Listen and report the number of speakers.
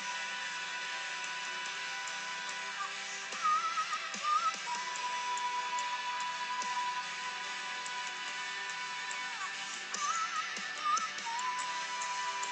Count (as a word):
zero